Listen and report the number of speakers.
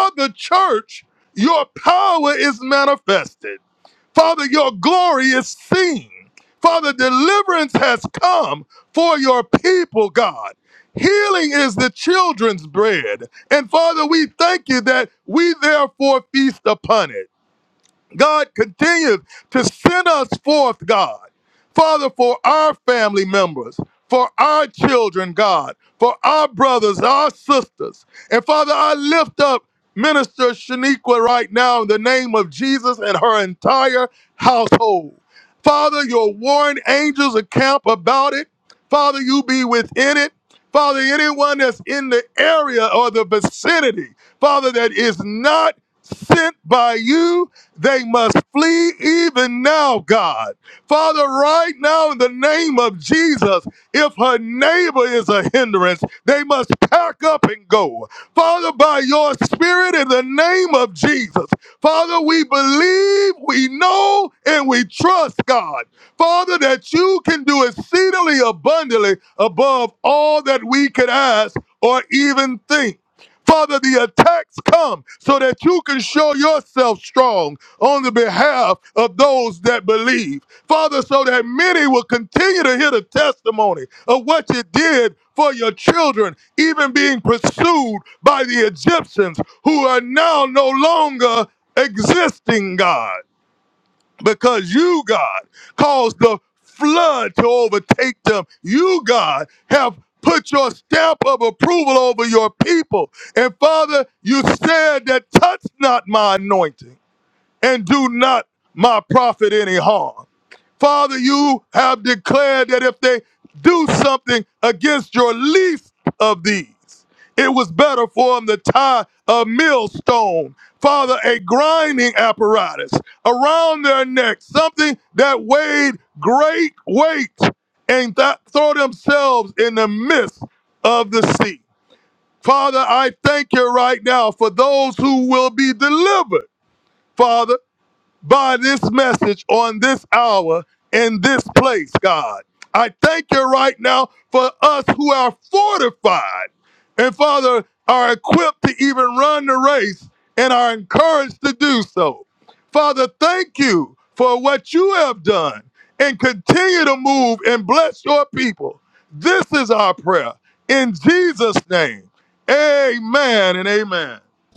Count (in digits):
1